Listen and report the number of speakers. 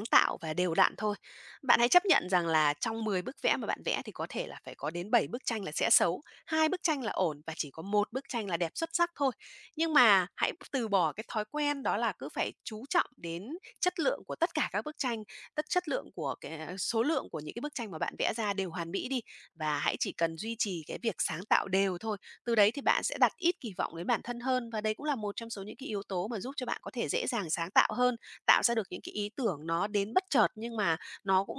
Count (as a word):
one